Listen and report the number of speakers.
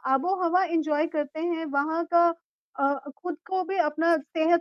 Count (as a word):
one